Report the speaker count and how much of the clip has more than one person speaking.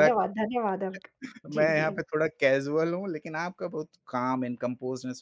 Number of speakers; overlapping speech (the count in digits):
2, about 12%